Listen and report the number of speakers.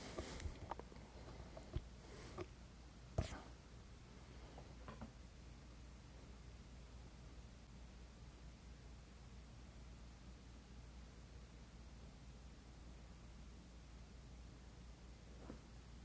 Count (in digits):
0